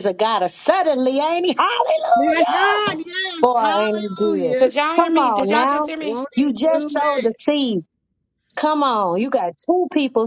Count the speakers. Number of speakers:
3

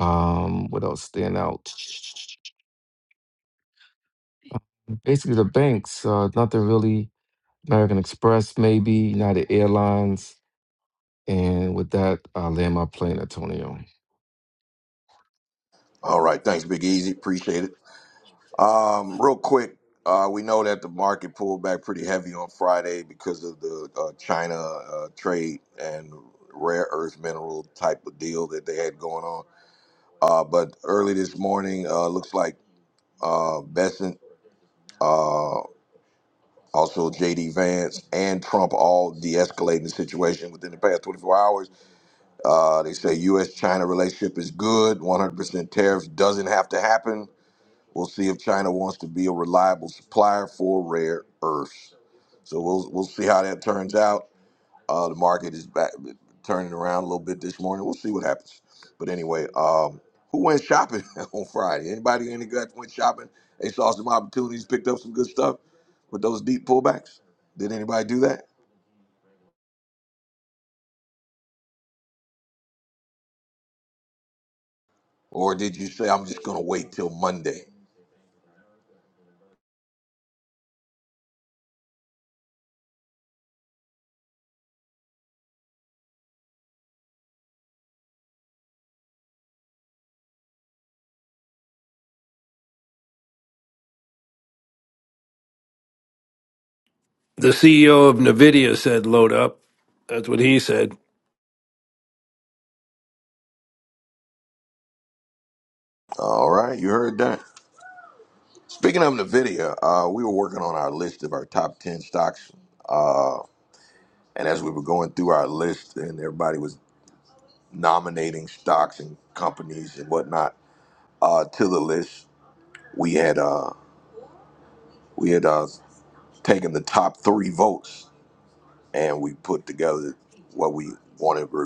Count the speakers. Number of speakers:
3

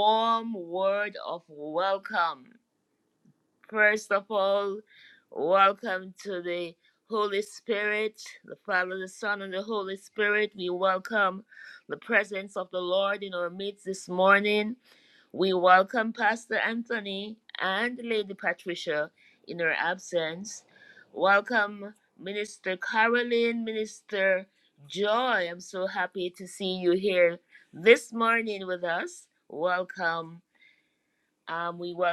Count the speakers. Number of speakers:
1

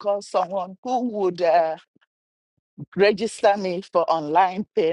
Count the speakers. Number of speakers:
1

